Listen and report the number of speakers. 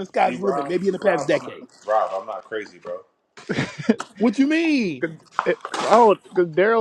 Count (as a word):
three